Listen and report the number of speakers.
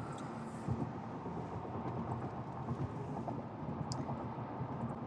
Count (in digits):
0